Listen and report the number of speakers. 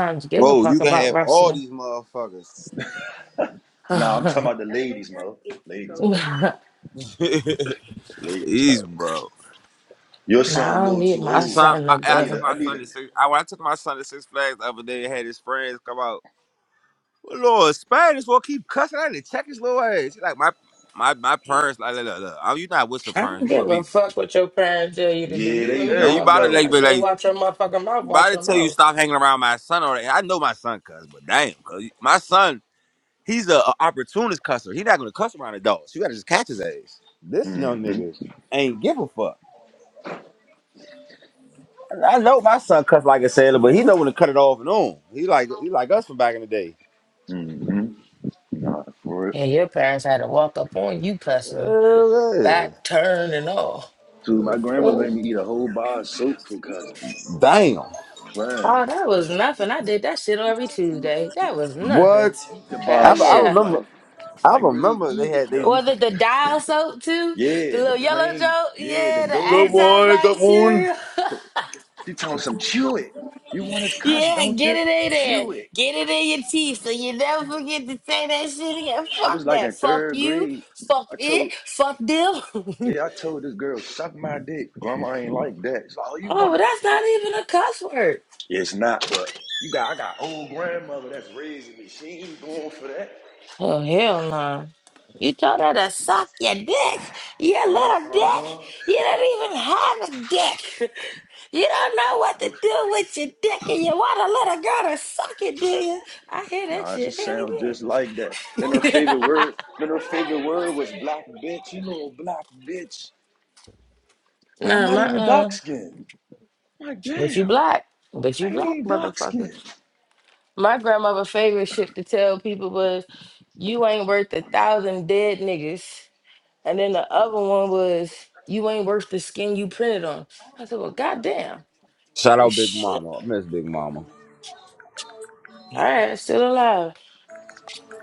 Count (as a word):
three